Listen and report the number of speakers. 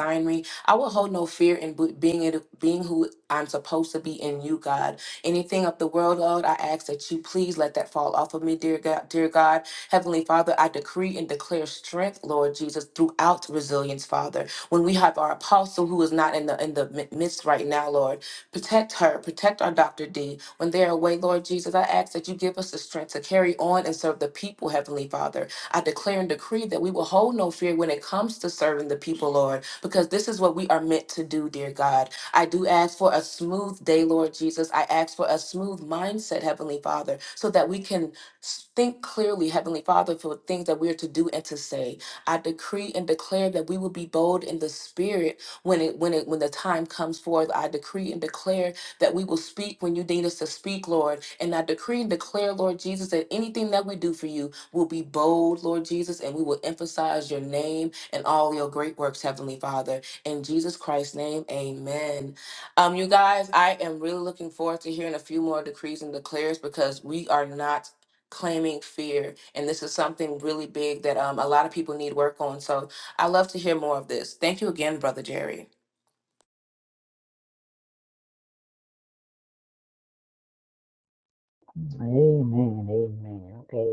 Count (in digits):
2